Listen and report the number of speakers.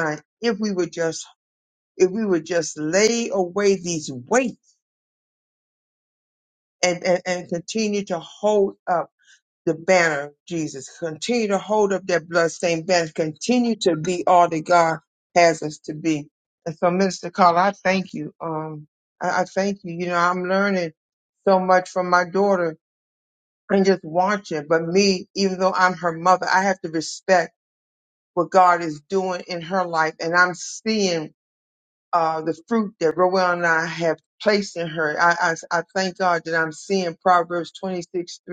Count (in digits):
1